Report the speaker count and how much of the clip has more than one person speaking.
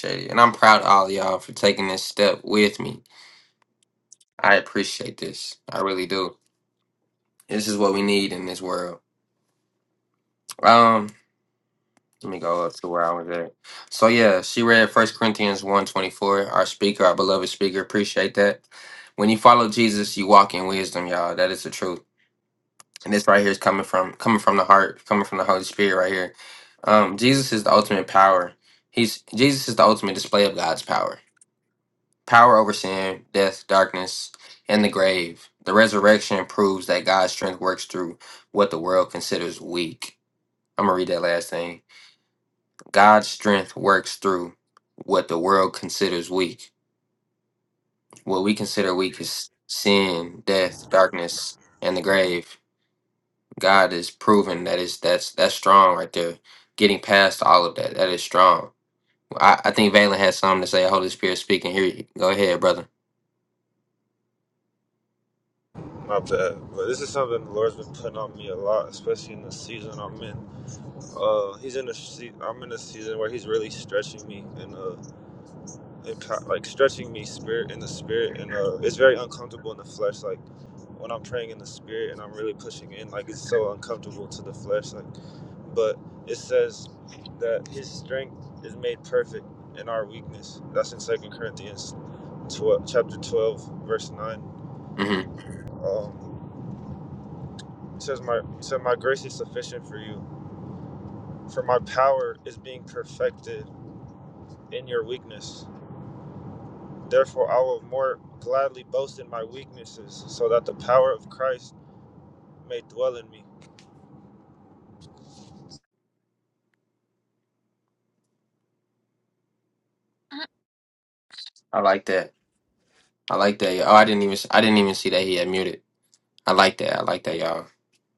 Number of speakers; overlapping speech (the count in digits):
2, no overlap